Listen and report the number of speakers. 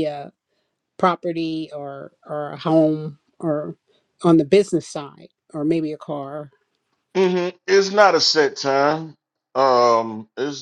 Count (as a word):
two